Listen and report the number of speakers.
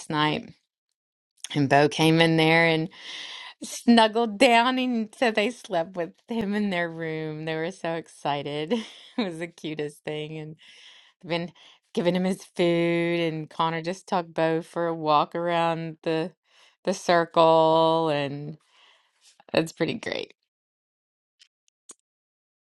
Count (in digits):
1